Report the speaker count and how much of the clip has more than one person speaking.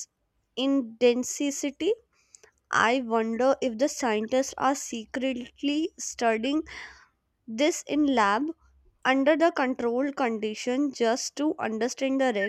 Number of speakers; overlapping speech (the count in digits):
1, no overlap